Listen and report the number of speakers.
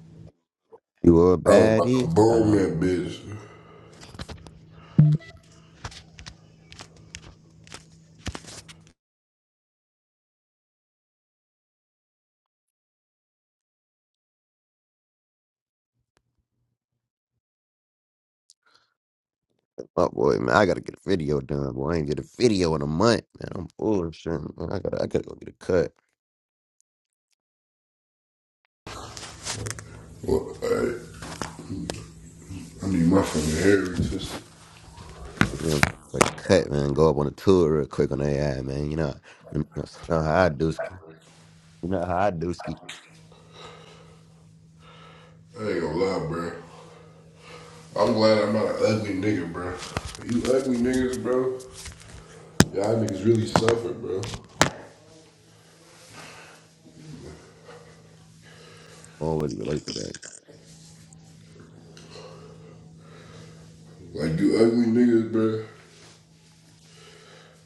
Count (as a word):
two